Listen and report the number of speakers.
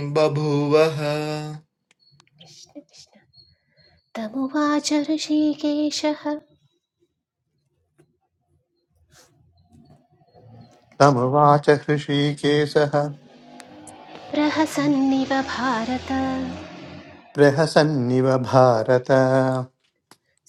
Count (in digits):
3